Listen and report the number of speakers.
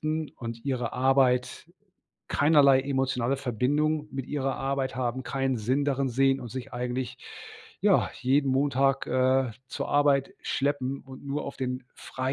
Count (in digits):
1